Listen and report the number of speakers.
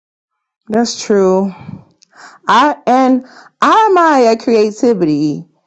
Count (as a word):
one